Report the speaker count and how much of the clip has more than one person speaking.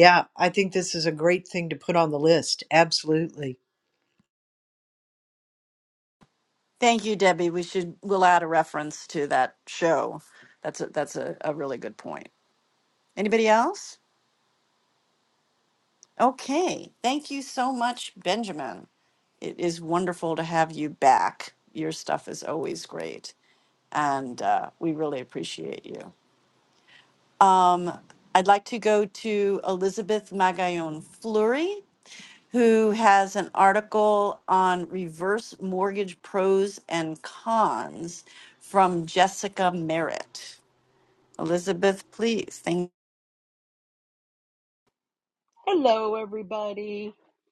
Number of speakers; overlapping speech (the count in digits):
3, no overlap